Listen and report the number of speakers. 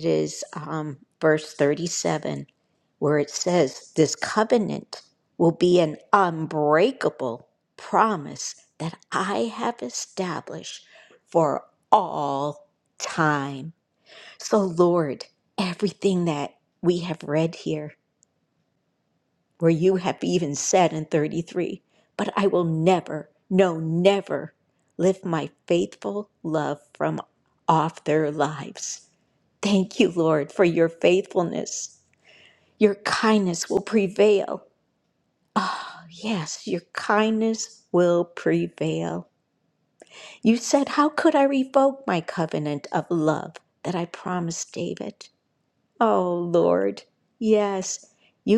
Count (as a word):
one